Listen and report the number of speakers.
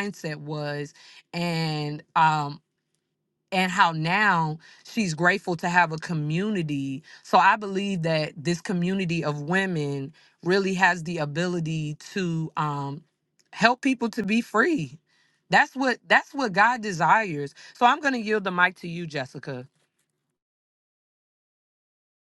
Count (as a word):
one